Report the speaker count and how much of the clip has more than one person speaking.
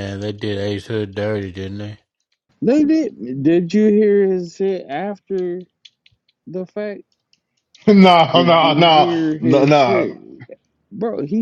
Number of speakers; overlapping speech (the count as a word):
three, about 16%